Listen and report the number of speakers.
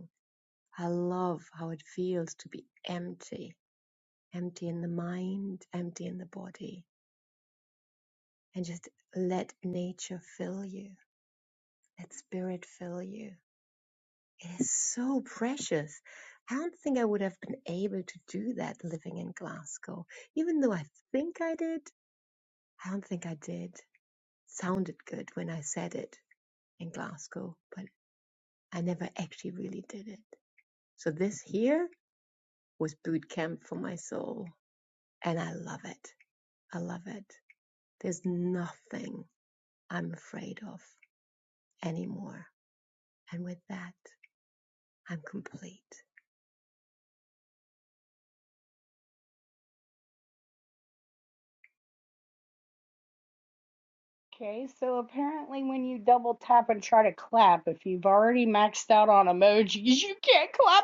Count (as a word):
two